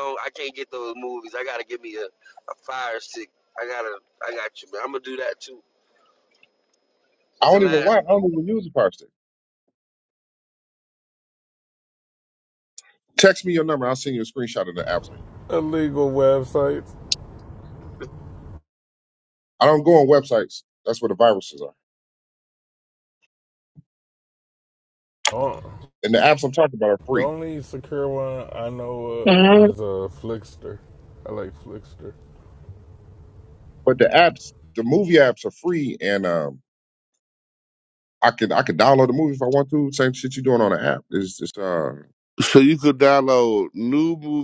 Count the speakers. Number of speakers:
4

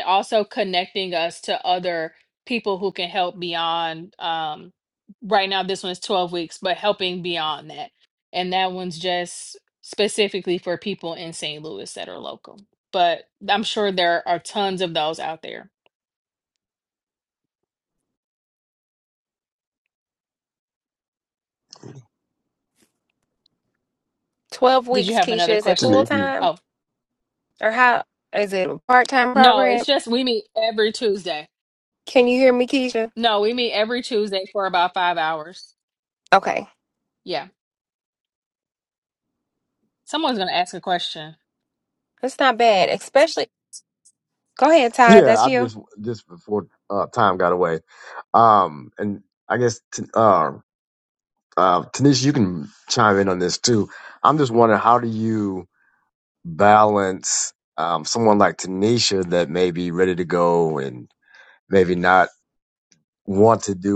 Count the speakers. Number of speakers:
3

